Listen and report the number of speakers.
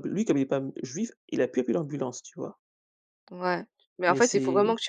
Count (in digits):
2